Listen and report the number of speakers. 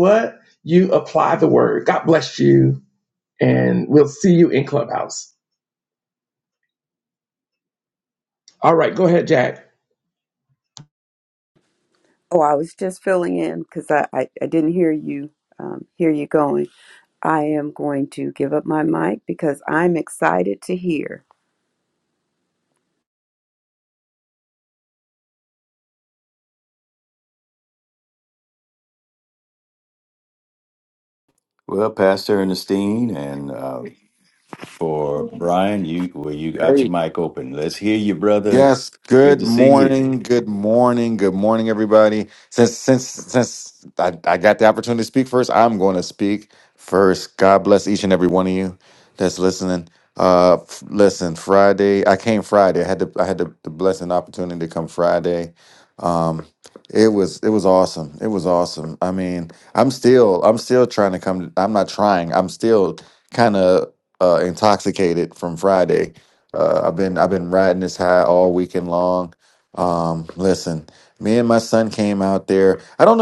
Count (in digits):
4